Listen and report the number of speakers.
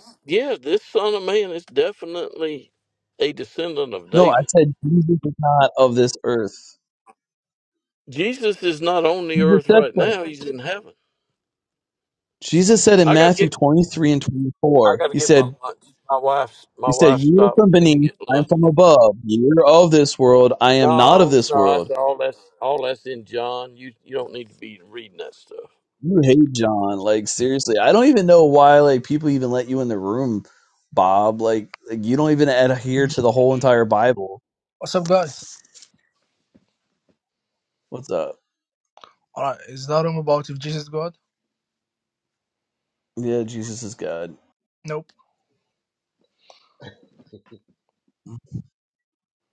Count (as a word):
three